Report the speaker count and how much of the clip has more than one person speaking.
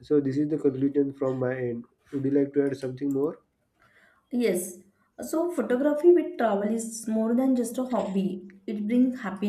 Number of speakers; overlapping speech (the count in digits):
2, no overlap